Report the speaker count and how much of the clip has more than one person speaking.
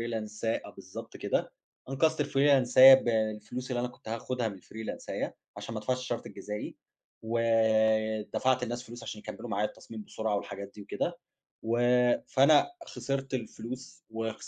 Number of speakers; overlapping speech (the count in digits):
1, no overlap